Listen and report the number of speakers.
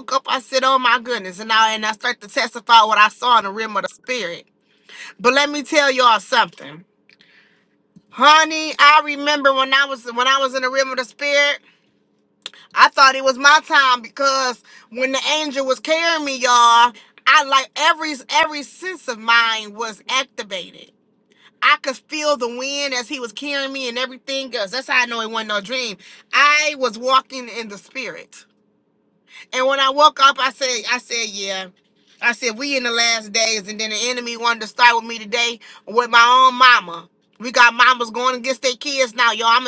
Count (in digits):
1